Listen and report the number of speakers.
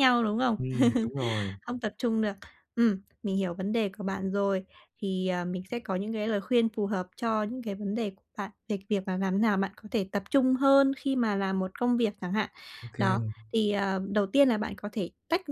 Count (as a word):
two